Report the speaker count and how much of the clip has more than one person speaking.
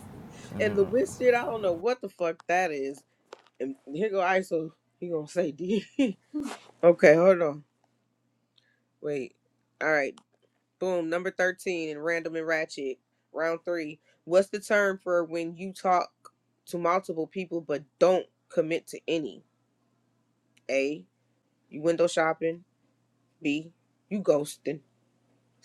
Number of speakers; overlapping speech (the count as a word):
one, no overlap